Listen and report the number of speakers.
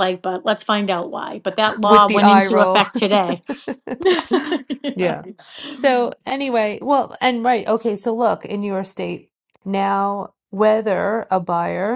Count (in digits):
2